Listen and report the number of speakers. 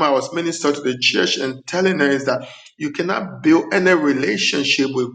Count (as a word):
one